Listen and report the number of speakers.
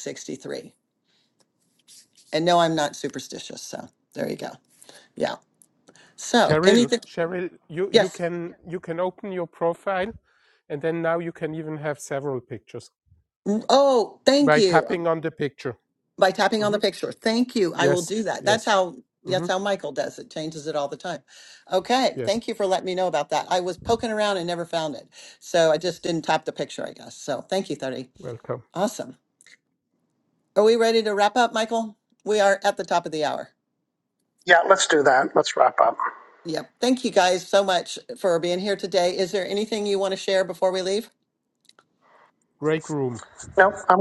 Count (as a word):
three